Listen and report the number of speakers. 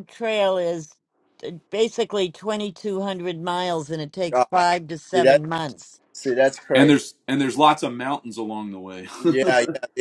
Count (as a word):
three